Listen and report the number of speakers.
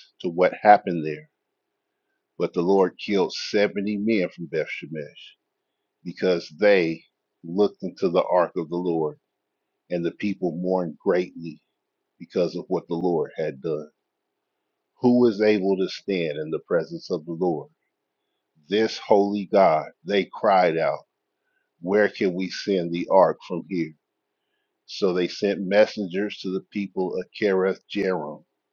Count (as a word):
one